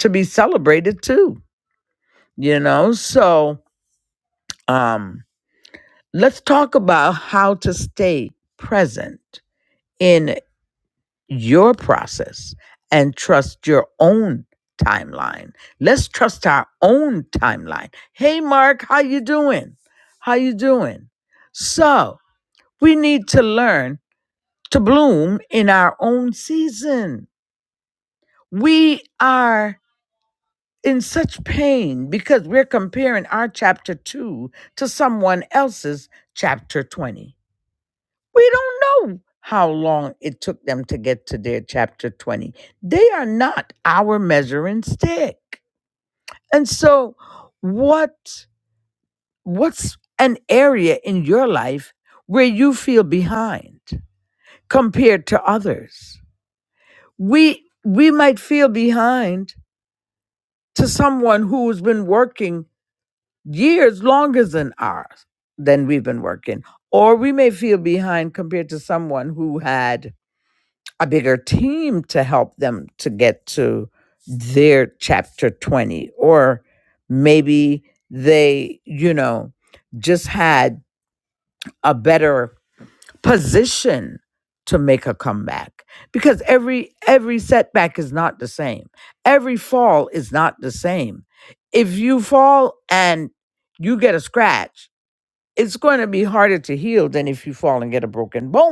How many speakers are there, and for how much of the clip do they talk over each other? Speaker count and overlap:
1, no overlap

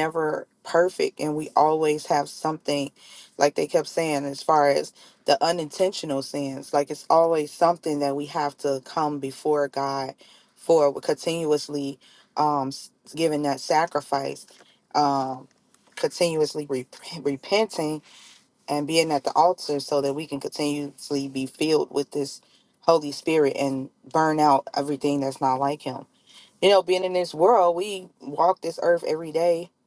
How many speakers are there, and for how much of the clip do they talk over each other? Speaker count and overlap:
1, no overlap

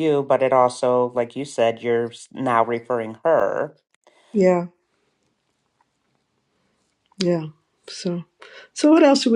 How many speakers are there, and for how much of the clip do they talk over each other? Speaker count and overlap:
2, no overlap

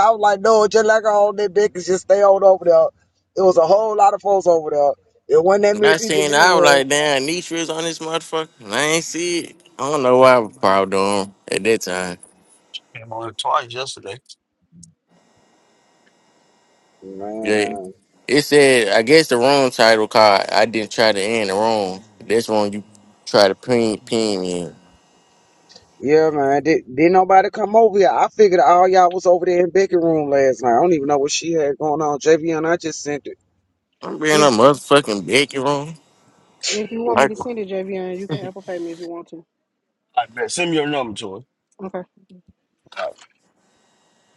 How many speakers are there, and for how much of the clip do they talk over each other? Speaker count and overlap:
4, about 4%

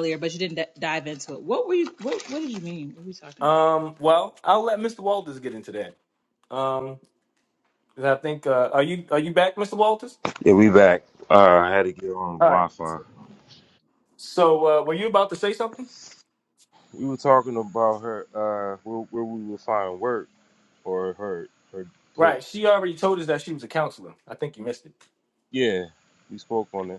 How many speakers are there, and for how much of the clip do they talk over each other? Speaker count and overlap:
3, about 2%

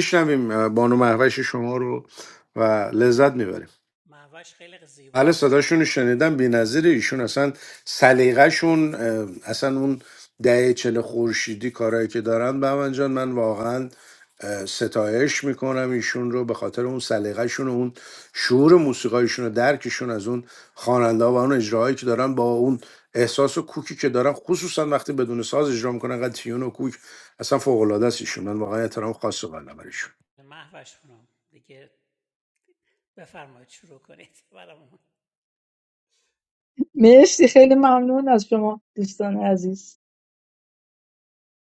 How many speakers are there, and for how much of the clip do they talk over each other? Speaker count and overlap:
3, about 1%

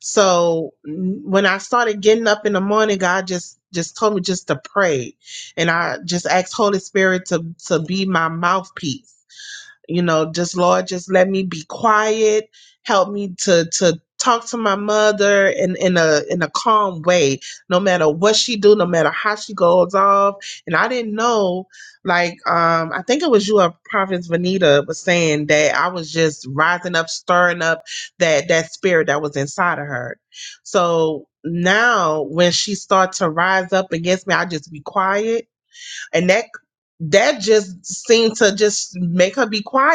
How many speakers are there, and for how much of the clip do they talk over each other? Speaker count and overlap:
1, no overlap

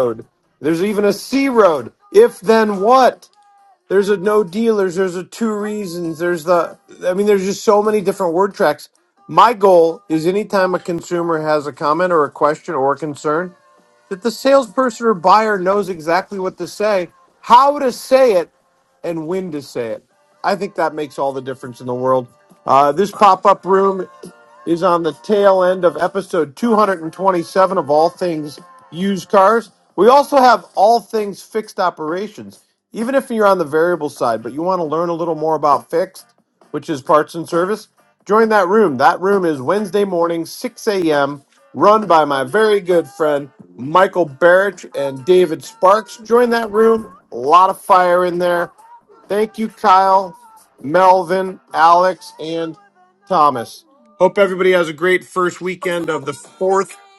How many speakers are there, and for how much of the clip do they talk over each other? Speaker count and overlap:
1, no overlap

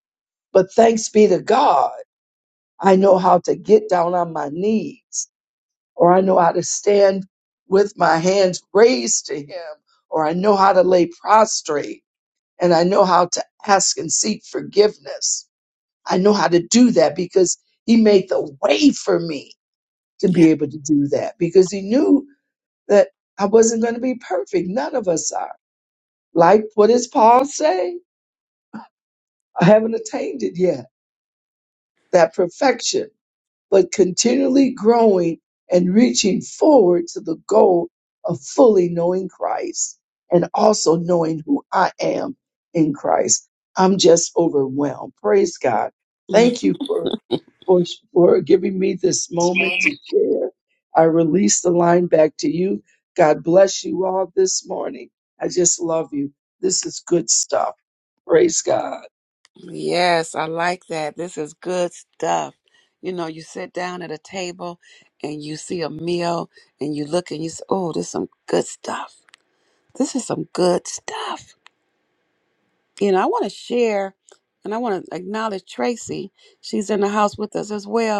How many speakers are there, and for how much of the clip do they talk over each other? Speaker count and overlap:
2, under 1%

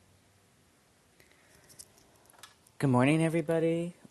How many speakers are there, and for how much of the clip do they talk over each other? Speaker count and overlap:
1, no overlap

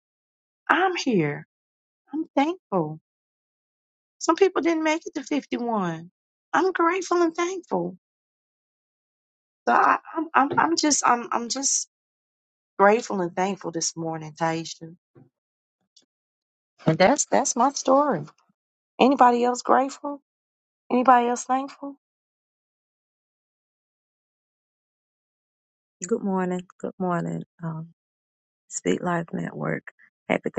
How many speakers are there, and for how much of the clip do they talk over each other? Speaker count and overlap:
2, no overlap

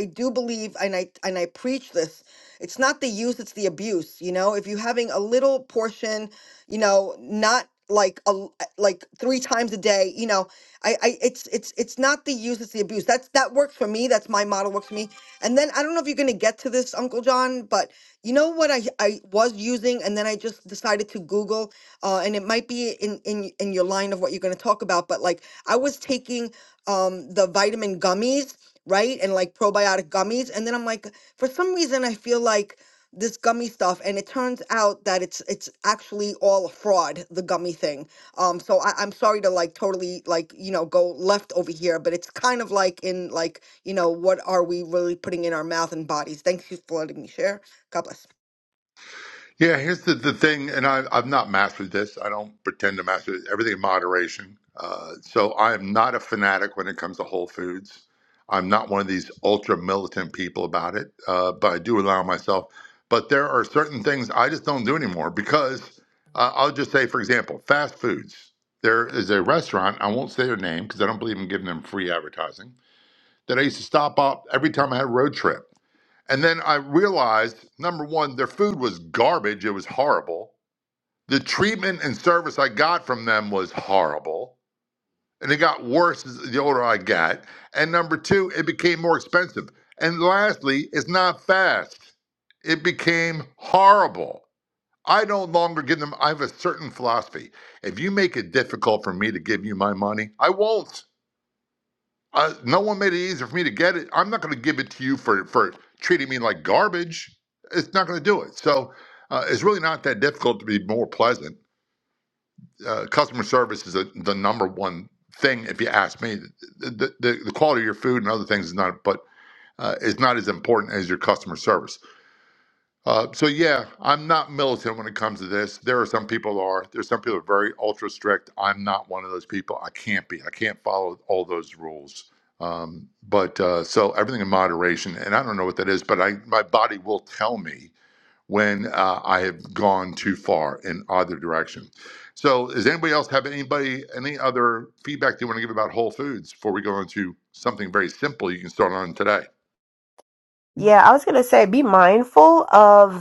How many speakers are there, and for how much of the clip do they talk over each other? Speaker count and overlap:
3, no overlap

